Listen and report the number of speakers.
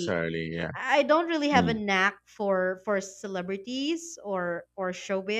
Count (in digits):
2